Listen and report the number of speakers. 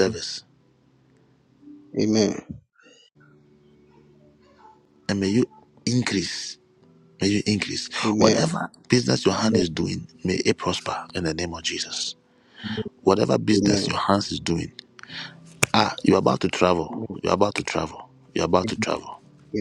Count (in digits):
2